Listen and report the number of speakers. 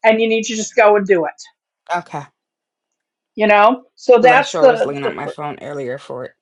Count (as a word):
two